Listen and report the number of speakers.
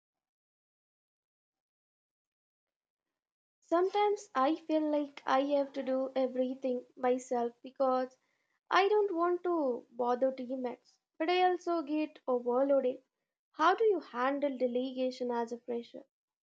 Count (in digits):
1